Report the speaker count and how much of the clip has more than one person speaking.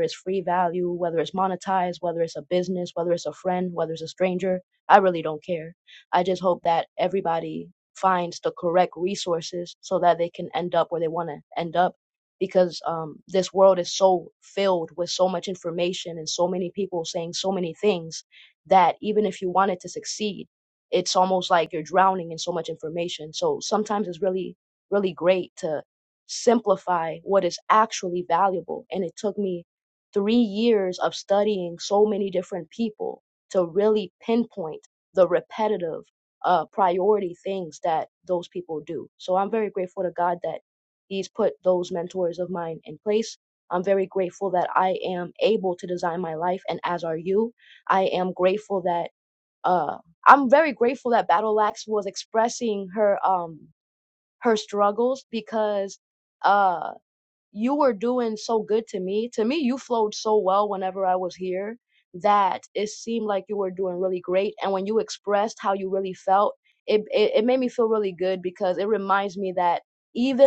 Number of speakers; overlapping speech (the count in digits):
1, no overlap